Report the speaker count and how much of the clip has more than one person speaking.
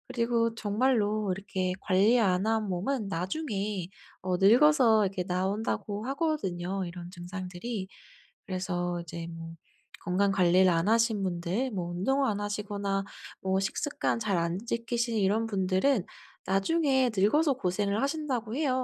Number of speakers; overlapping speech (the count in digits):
1, no overlap